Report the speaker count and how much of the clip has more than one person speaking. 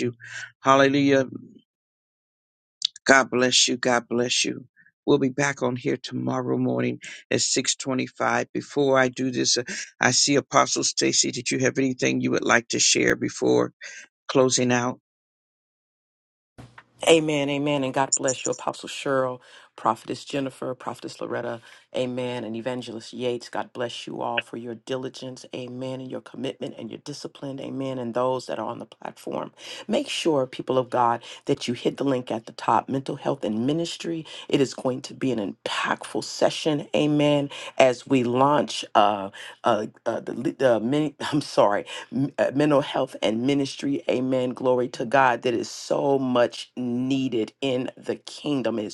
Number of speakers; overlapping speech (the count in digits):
2, no overlap